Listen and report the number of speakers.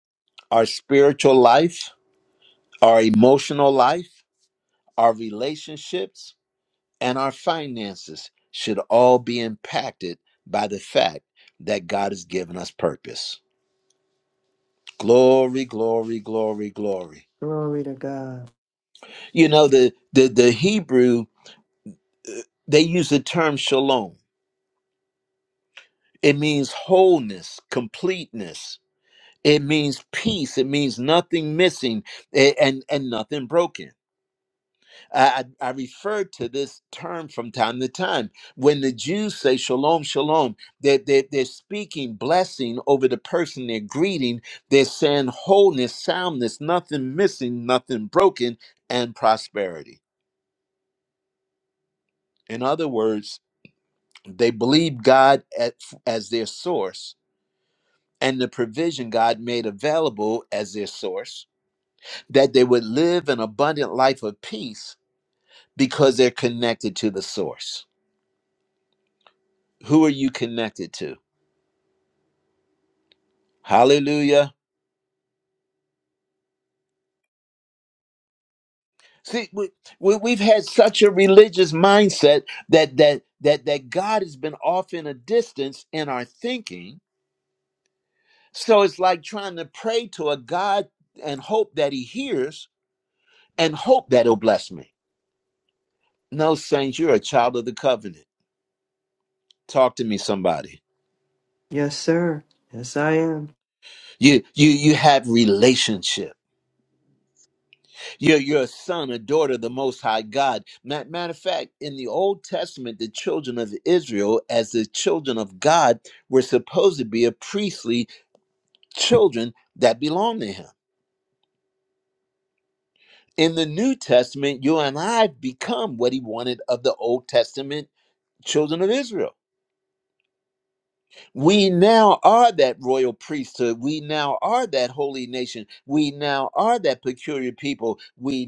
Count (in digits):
2